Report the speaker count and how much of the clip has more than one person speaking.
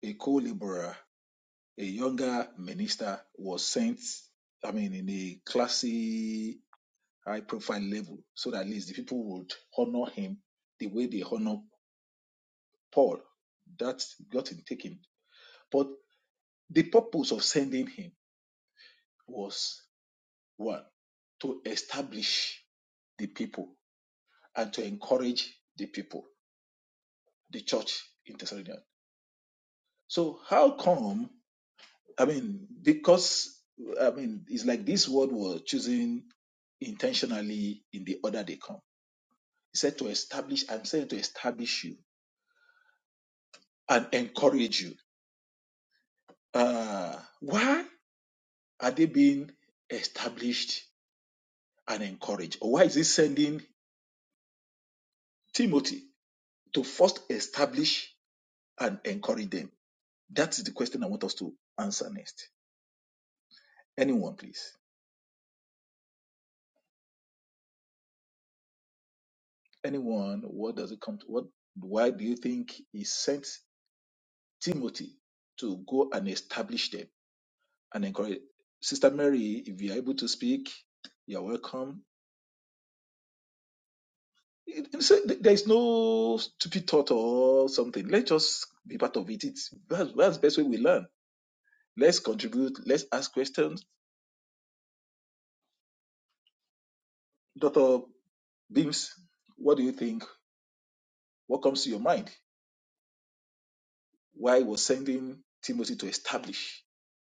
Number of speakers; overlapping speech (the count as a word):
one, no overlap